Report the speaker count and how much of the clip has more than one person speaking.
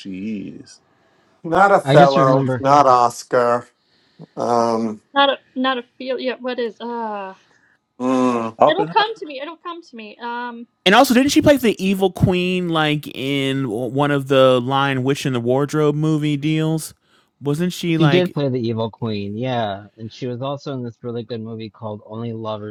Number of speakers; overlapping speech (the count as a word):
five, about 7%